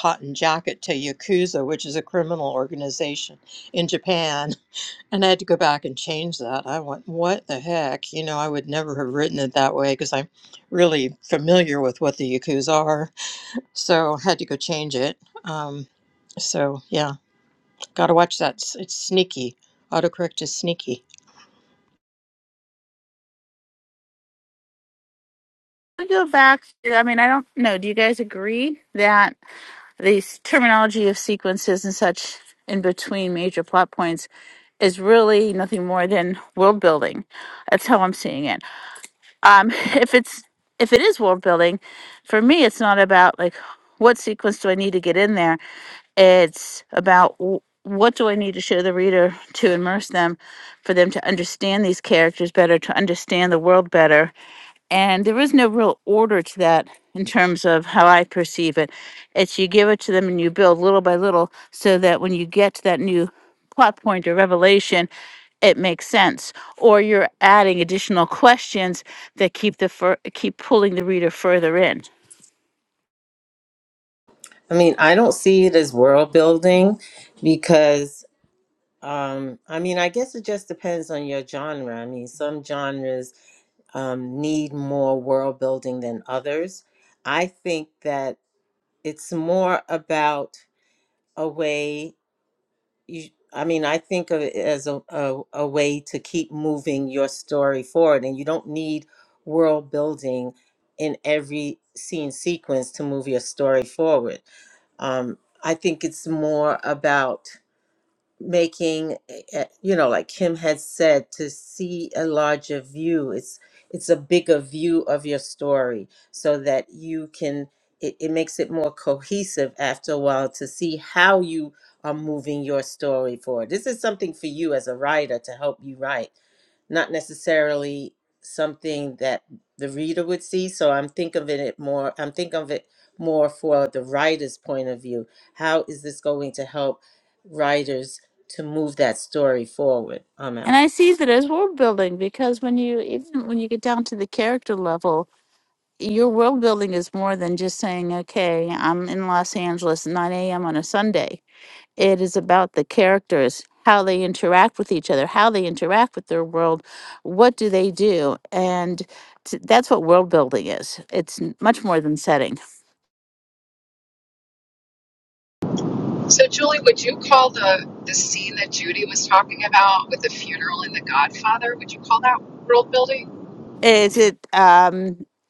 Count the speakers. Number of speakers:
four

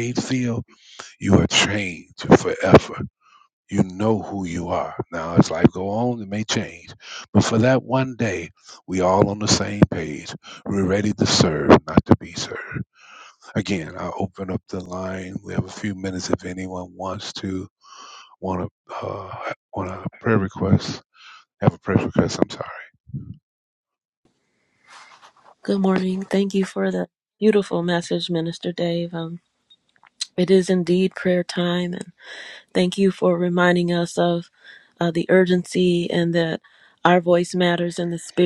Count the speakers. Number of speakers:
two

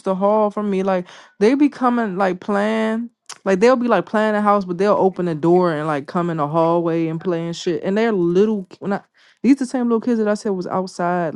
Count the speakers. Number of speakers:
one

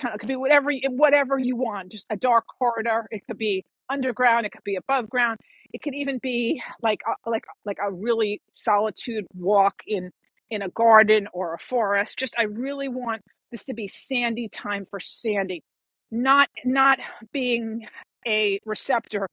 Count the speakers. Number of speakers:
one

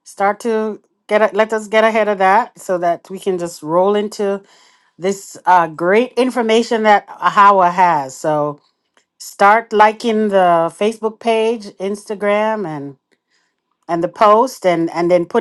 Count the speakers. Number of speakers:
one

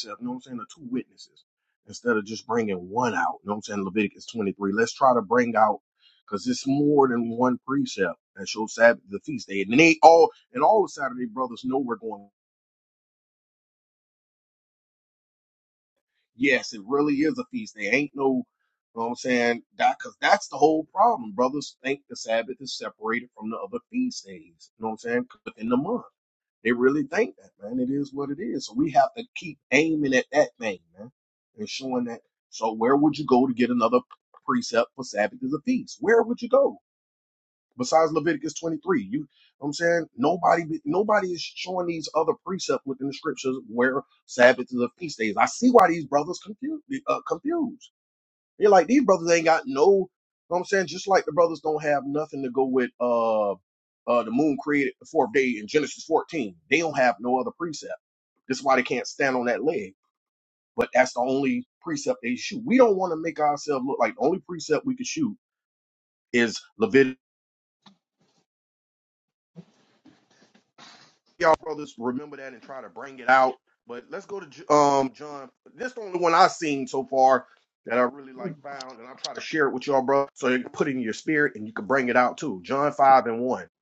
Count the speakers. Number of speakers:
one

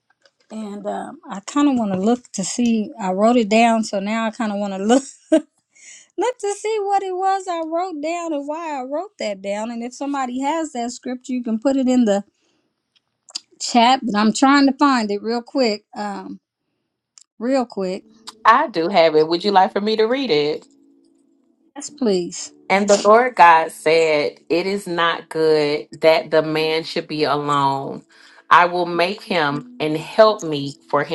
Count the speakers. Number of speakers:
two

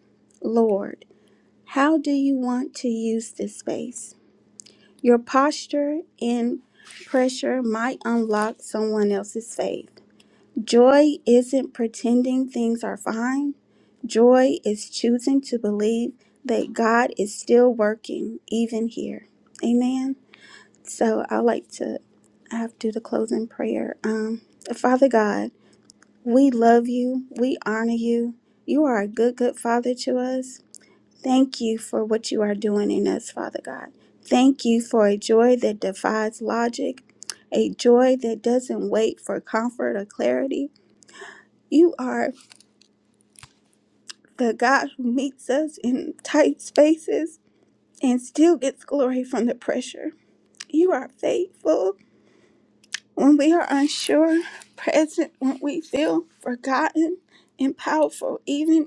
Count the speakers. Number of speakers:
one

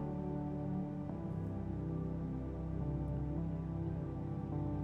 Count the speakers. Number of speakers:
zero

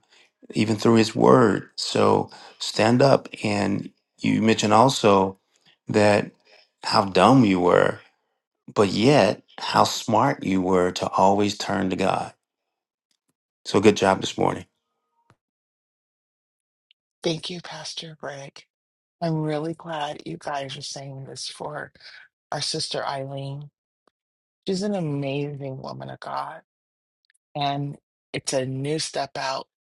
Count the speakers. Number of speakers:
two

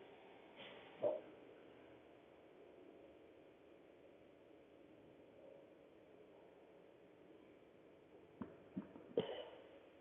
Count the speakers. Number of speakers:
zero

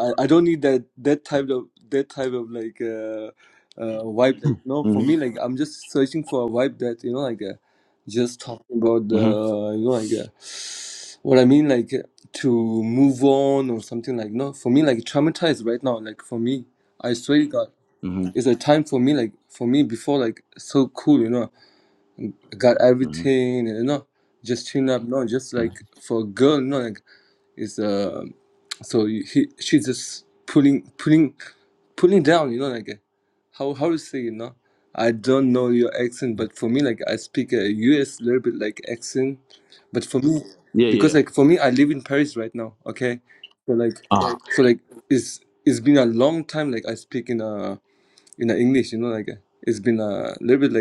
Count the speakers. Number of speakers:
two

